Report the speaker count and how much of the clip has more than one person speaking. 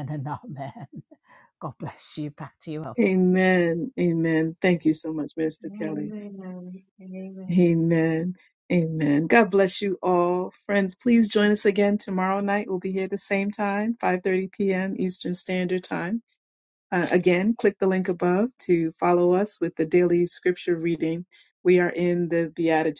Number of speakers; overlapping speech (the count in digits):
3, about 4%